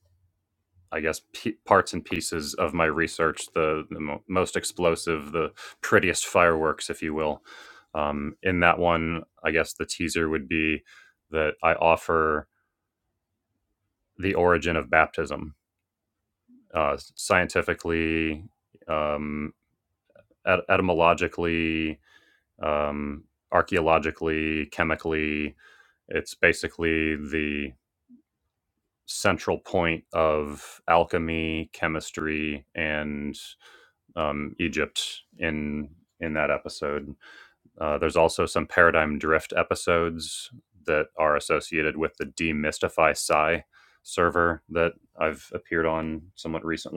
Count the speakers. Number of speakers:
1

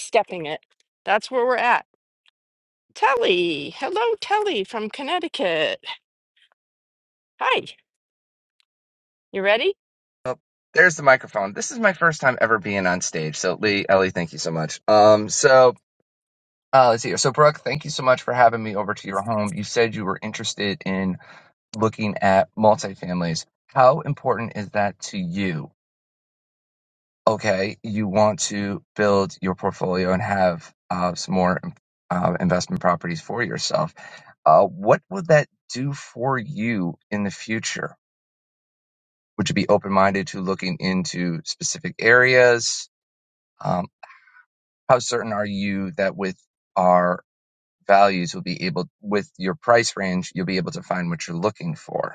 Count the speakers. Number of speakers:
2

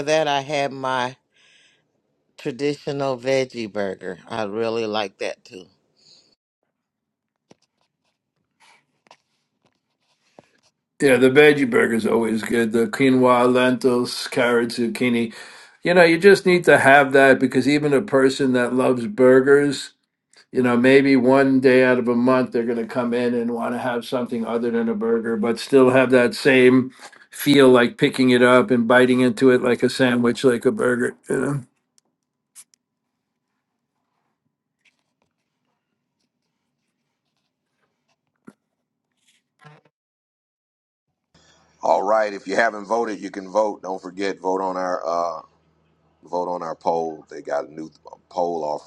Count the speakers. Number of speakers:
3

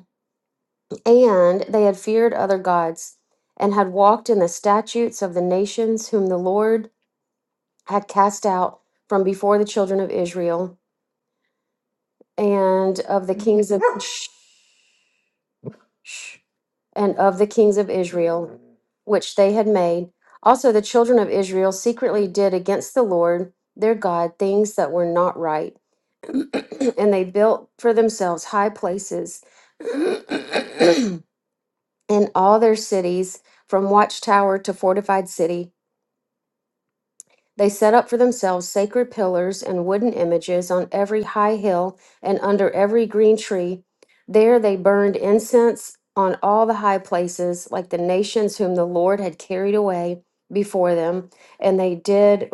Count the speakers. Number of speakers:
1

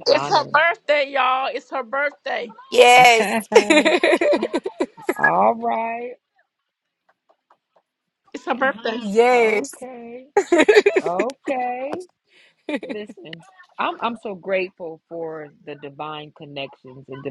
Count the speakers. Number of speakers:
3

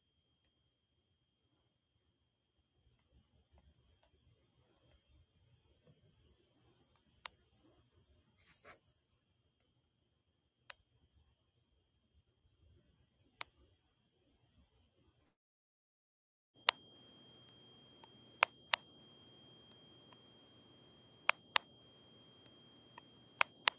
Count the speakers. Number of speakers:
0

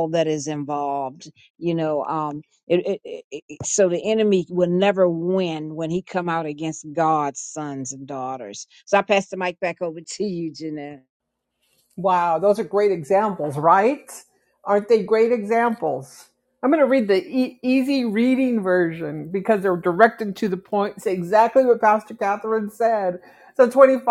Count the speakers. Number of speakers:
2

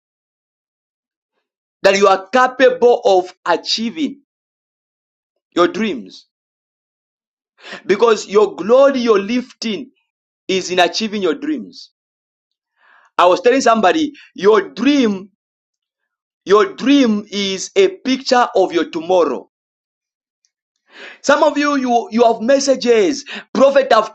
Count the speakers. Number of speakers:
1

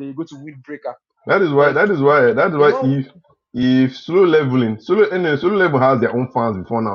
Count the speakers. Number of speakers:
2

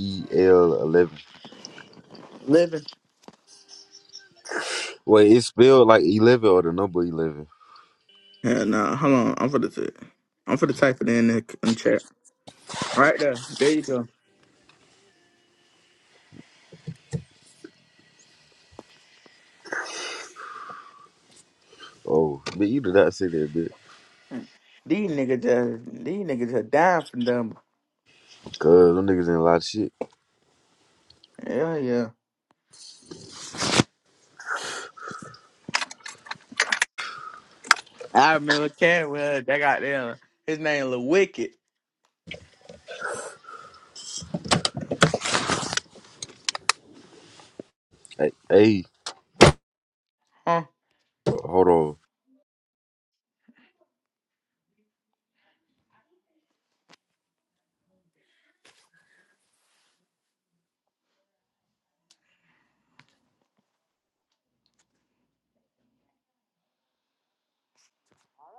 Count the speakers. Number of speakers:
2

